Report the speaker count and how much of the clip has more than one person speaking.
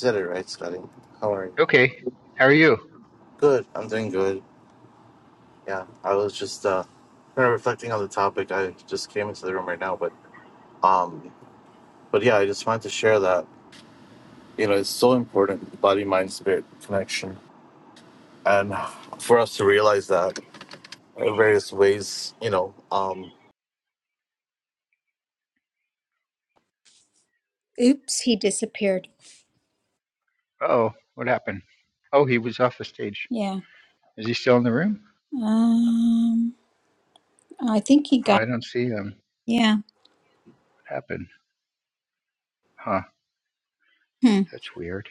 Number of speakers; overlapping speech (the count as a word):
three, under 1%